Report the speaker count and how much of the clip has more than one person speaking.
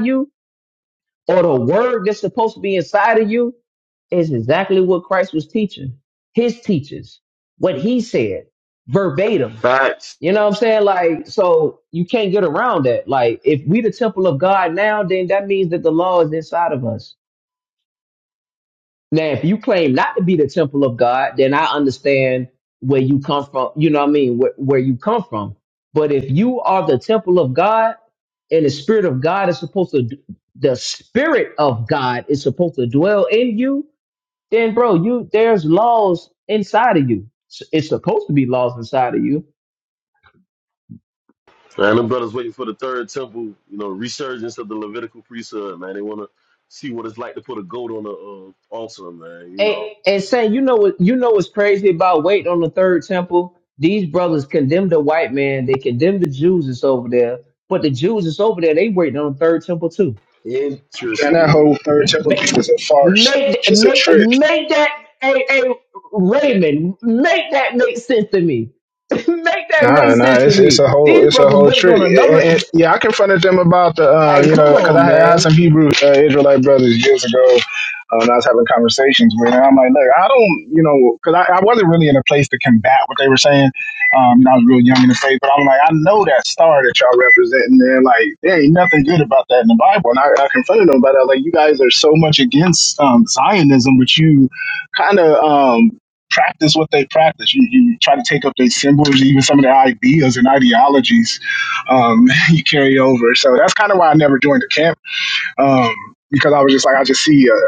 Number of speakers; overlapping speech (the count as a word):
three, about 6%